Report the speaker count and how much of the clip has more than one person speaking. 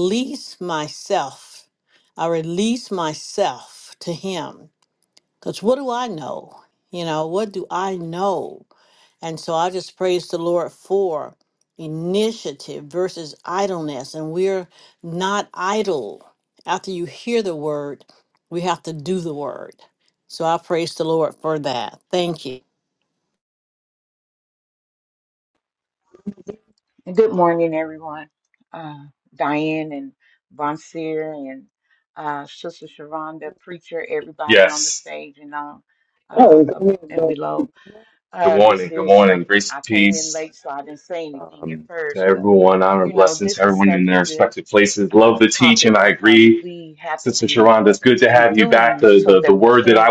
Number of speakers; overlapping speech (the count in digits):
3, about 16%